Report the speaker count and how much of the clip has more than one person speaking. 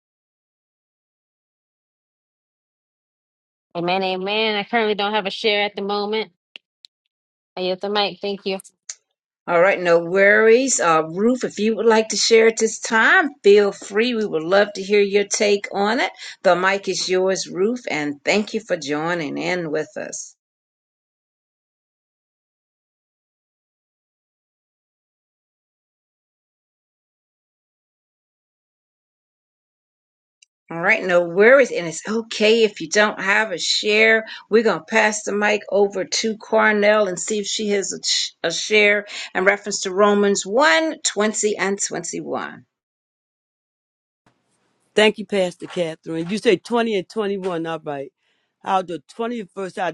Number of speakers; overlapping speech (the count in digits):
3, no overlap